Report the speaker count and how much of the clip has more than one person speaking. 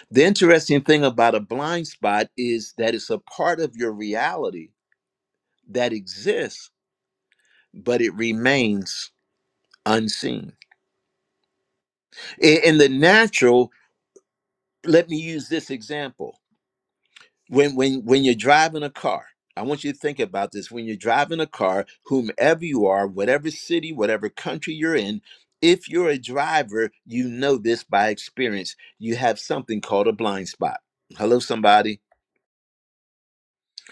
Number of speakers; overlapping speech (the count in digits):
1, no overlap